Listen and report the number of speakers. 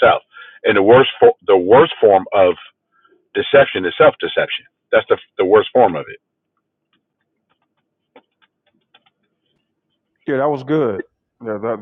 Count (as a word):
two